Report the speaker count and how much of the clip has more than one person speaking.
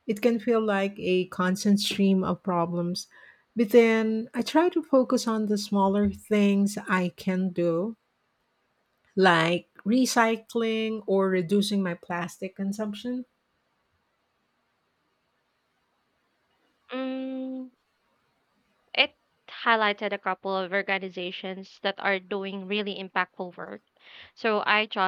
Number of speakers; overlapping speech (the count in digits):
2, no overlap